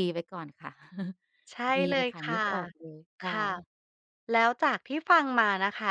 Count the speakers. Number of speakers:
two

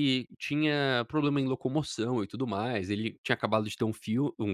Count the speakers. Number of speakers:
one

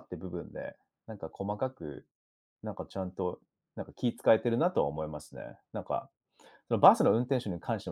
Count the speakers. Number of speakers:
one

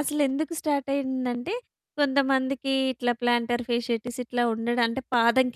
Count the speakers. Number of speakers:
one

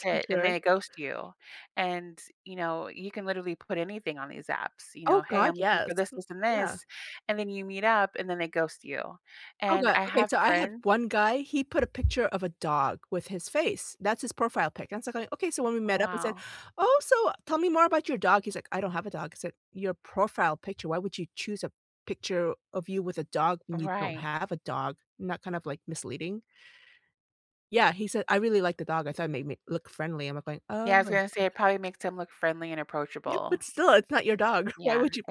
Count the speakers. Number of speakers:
two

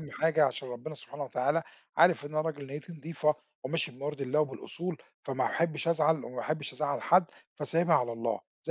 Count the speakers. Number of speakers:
one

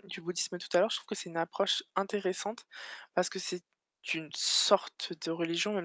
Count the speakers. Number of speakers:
one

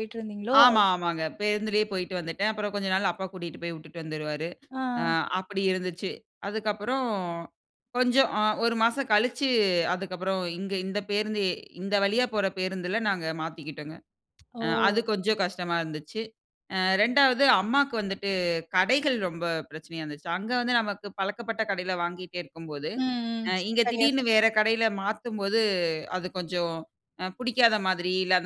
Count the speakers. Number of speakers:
two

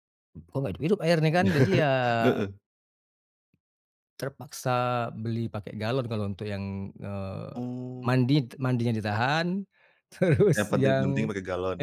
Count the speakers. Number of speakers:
two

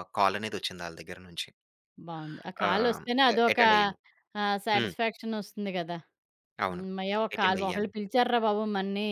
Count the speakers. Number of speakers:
two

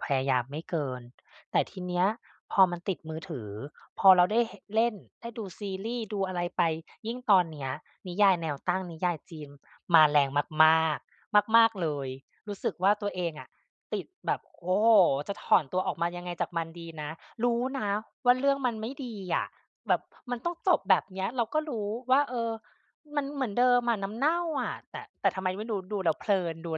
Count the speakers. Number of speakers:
one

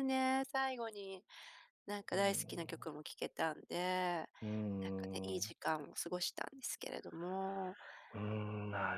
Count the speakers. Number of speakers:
two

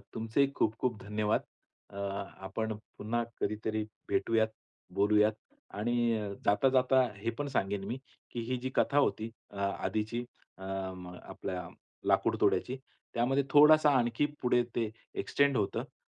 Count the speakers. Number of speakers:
one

